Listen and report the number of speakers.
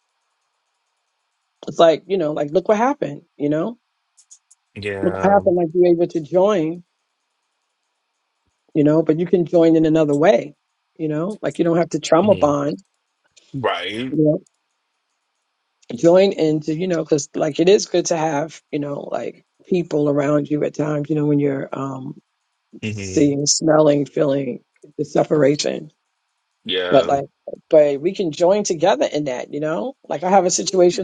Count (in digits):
2